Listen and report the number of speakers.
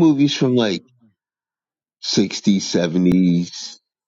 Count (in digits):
1